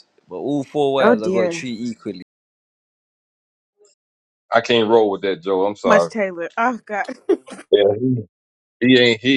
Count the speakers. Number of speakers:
3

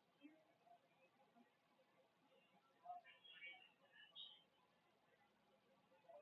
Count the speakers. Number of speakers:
0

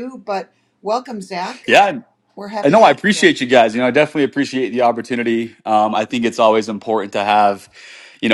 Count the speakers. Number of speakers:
2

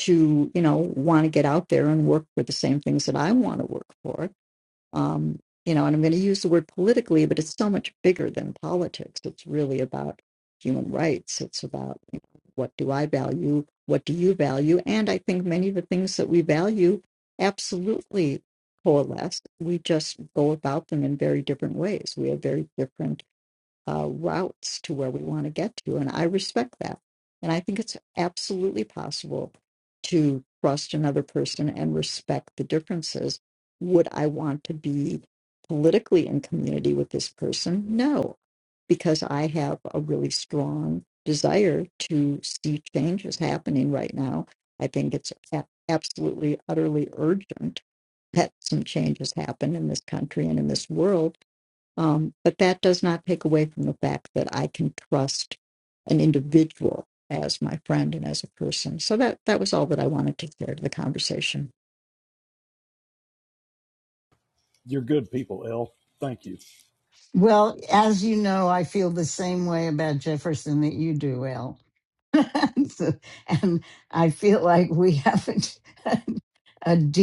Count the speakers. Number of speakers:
3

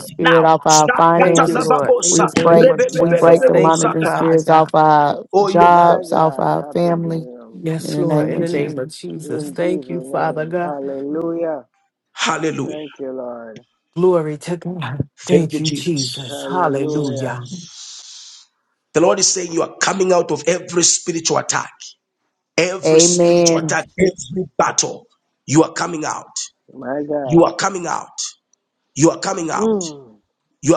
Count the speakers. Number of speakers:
4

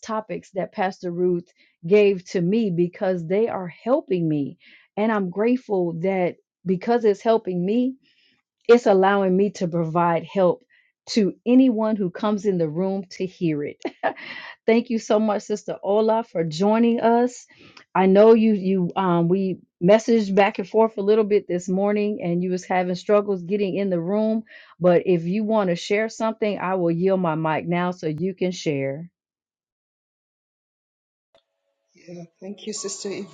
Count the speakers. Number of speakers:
2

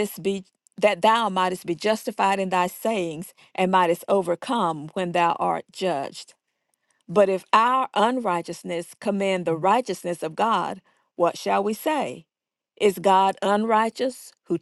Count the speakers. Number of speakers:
1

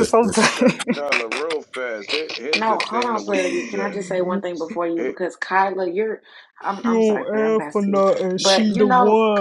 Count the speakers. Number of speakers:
3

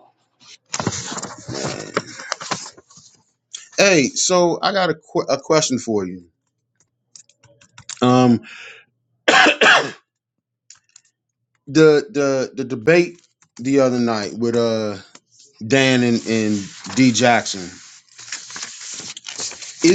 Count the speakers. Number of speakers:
1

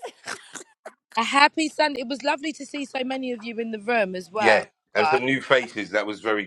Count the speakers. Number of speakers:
2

